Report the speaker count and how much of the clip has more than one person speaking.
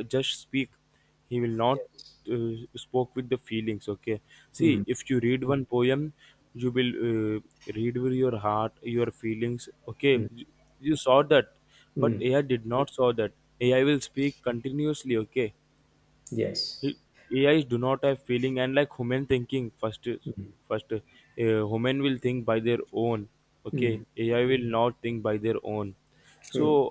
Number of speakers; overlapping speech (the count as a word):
two, about 5%